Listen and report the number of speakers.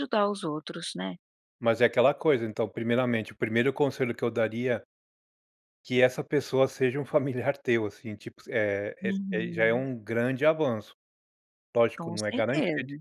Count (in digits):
2